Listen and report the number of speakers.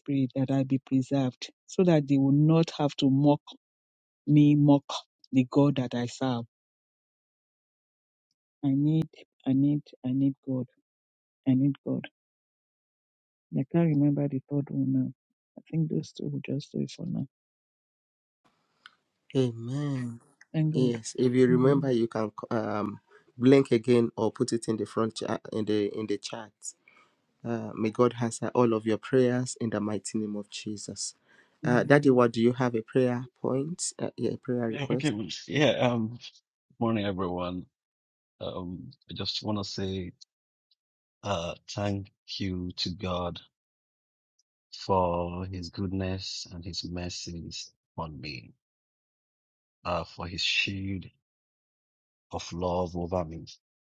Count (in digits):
3